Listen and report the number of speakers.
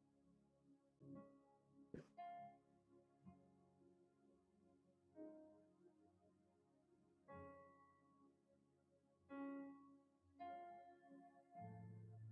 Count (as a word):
zero